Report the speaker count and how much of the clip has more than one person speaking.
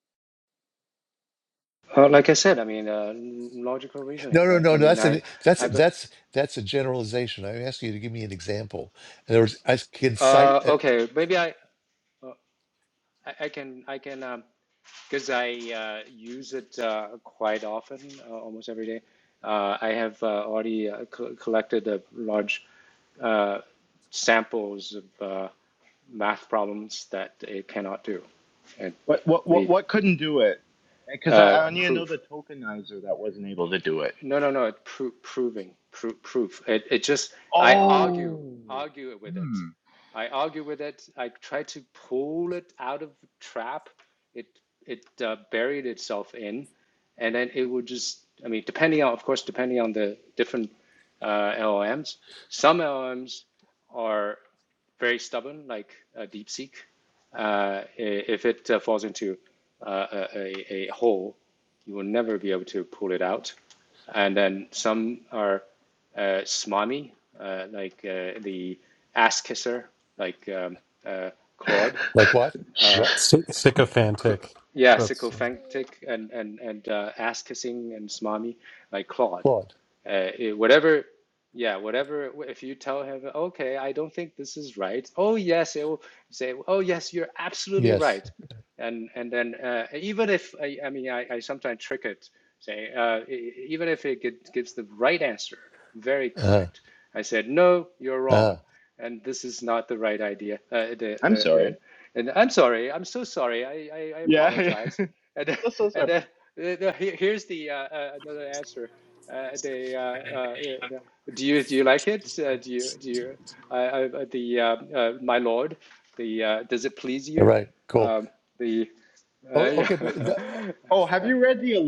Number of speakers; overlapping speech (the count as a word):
four, about 6%